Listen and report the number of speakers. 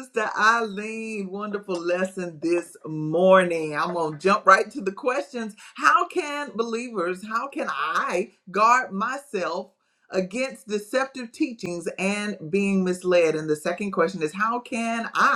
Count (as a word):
one